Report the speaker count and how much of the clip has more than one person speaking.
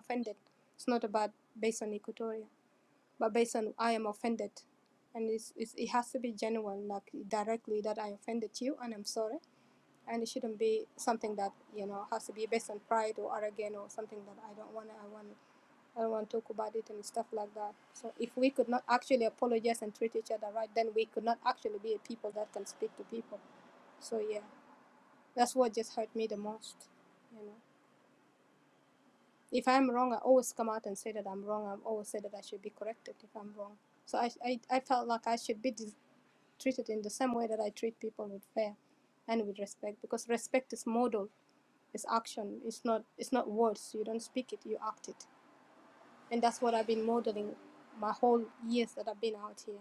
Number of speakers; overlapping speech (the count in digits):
1, no overlap